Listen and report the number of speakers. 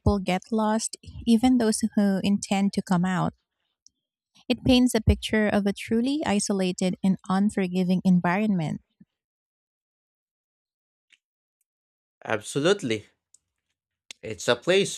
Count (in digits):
2